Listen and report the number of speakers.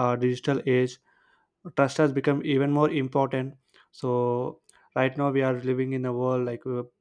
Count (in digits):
1